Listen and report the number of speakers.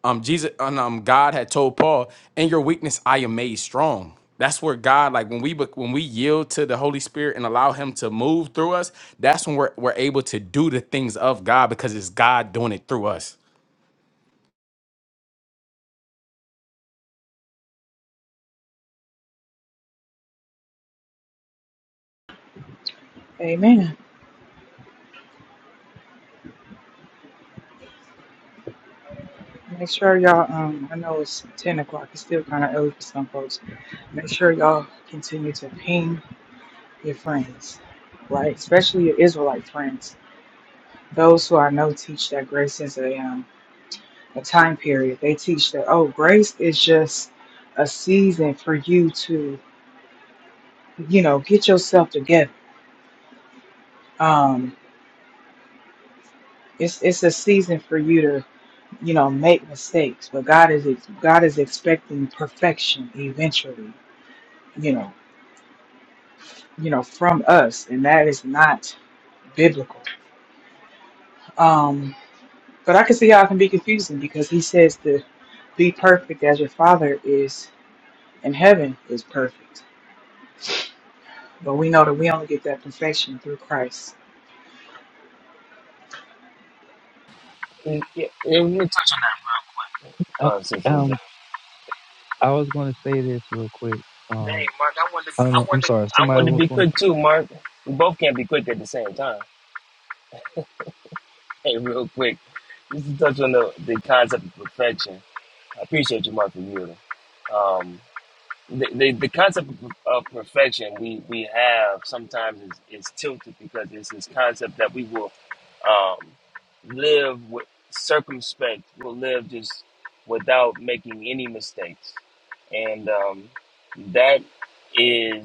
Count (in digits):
4